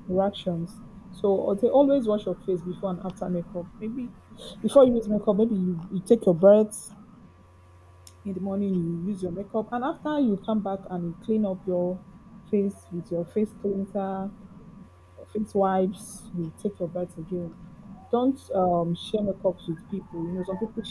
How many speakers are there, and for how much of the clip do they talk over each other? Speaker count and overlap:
one, no overlap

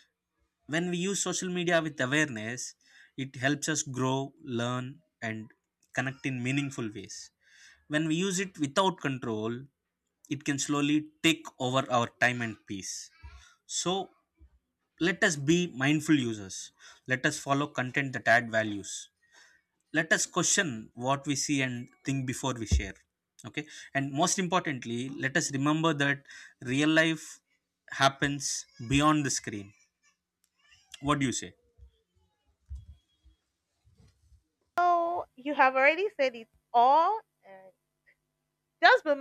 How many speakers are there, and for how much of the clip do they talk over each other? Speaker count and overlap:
two, no overlap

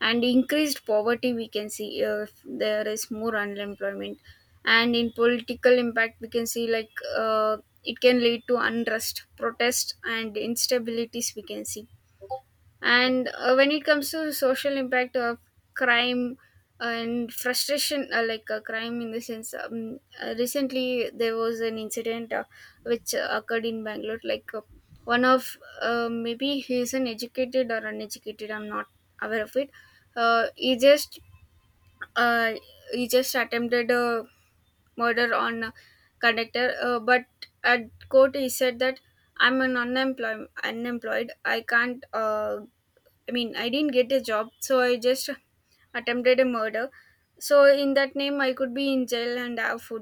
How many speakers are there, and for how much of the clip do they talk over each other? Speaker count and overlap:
one, no overlap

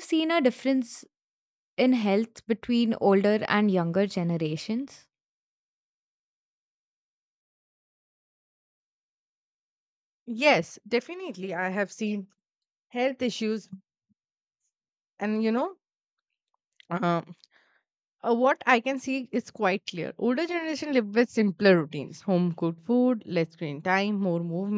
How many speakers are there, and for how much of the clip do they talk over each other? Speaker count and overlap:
two, no overlap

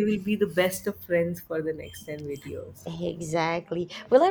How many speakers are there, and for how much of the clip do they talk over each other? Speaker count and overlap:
two, no overlap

